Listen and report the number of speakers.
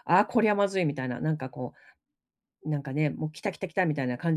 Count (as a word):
one